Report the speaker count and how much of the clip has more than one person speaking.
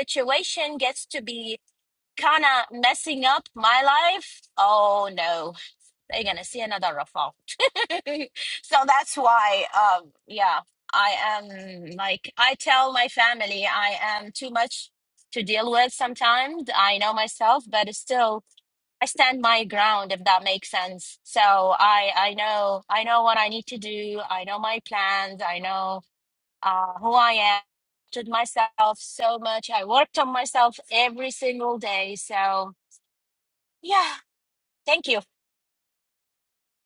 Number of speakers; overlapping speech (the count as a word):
one, no overlap